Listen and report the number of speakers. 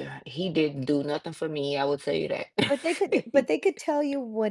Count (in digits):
2